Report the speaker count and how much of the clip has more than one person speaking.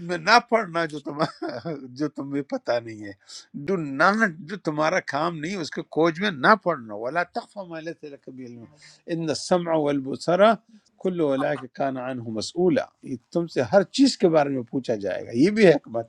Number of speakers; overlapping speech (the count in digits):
1, no overlap